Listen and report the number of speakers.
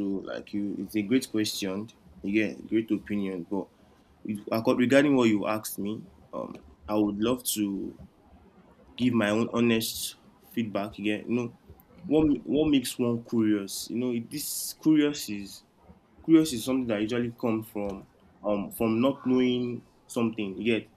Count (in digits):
1